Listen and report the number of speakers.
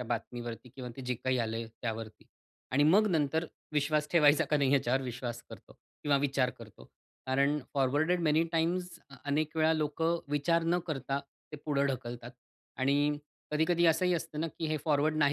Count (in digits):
1